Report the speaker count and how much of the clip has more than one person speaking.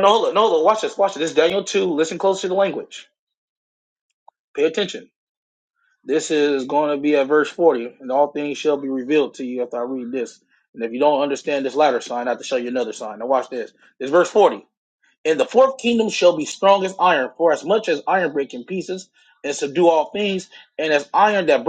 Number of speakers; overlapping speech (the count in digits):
1, no overlap